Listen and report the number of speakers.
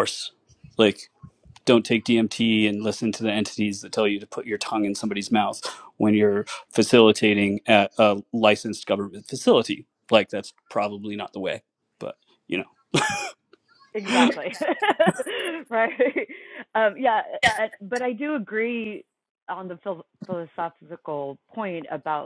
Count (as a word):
two